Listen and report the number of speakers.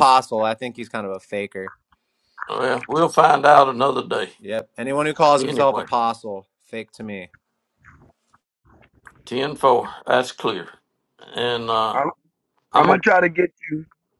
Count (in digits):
3